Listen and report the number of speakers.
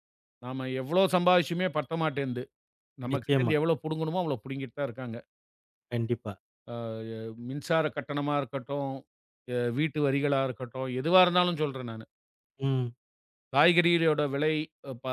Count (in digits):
2